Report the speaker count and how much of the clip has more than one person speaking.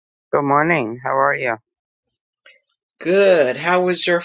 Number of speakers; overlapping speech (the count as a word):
two, no overlap